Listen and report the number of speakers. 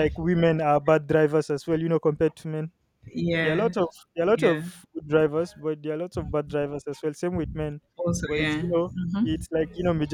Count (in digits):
2